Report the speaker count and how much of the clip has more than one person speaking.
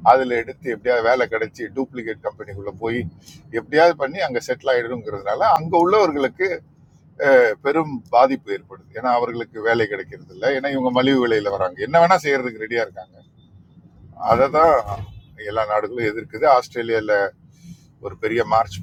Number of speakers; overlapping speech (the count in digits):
1, no overlap